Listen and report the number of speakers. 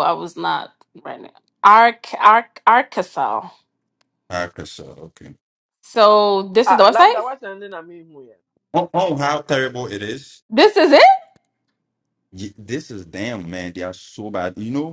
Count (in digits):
3